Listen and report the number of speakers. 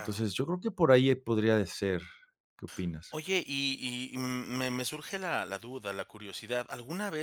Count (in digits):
2